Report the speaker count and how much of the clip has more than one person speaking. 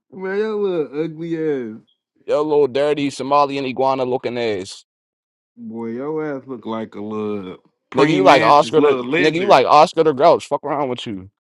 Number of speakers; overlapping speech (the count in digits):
2, about 14%